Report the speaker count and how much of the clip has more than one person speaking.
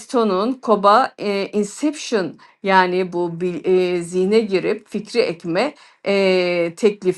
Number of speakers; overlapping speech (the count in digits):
1, no overlap